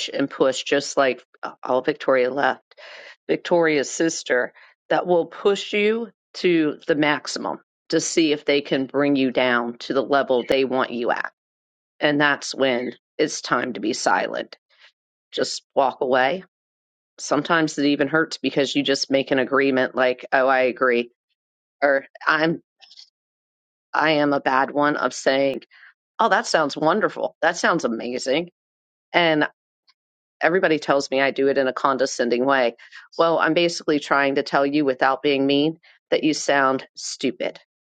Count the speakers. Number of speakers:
1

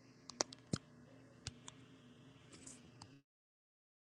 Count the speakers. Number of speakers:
0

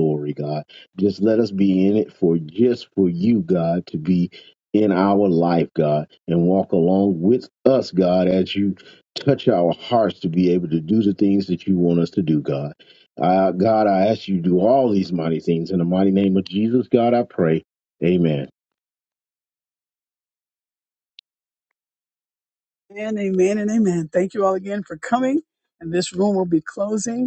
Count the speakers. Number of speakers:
2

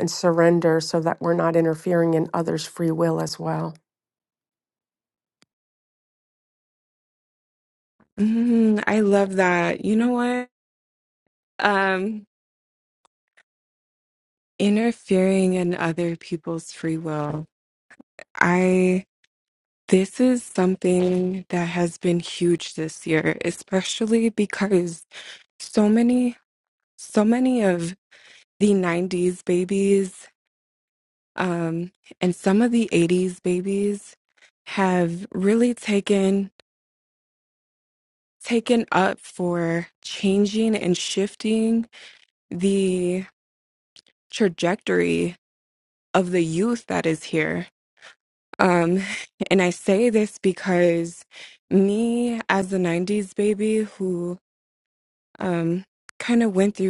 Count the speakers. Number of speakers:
2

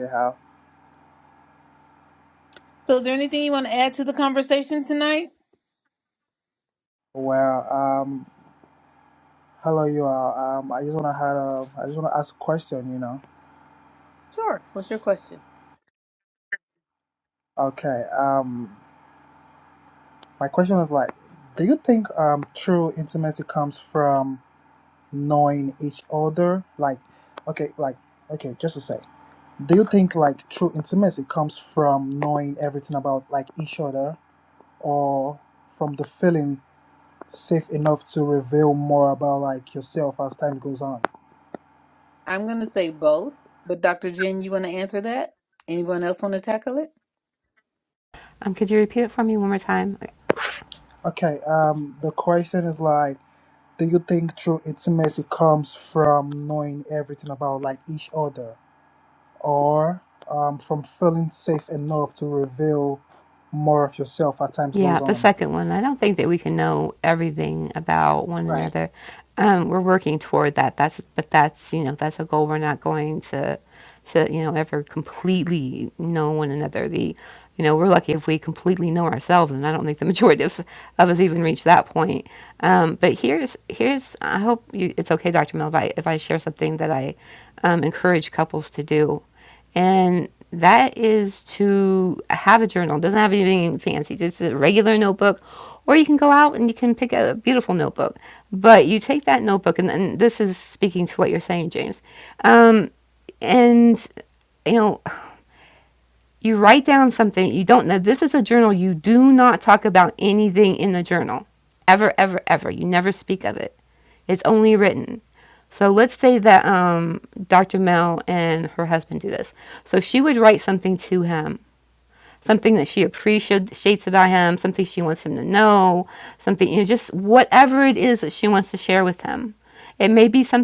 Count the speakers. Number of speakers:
3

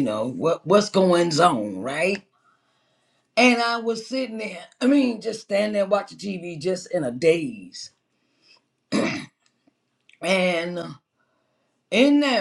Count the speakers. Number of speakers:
1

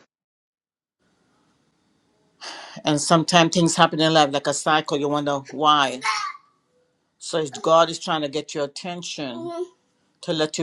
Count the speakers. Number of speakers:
1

